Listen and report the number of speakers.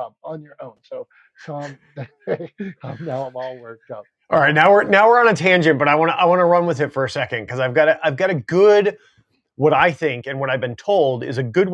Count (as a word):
two